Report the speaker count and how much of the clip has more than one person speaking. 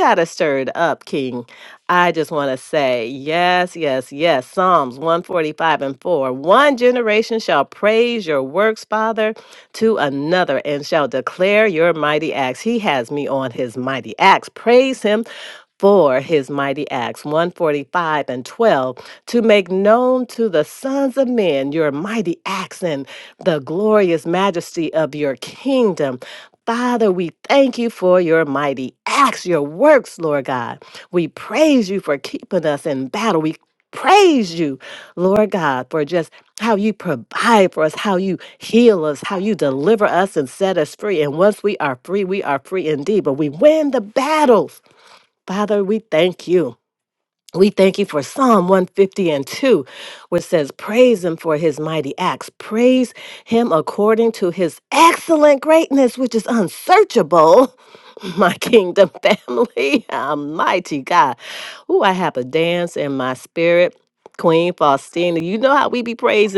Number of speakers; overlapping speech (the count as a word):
one, no overlap